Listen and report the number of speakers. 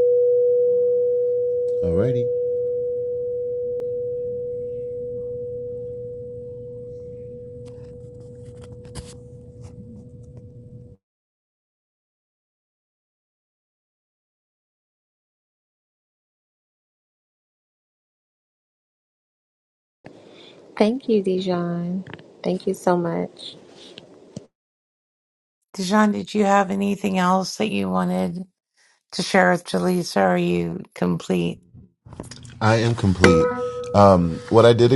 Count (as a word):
three